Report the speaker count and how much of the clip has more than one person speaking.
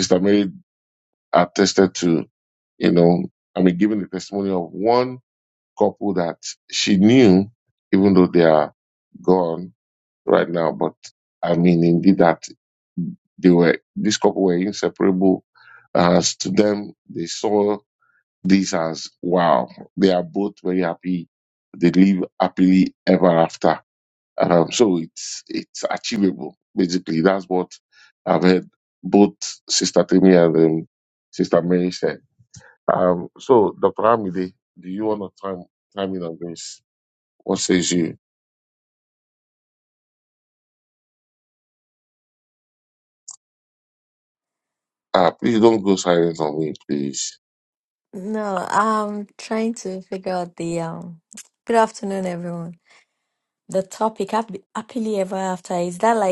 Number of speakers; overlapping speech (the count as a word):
two, no overlap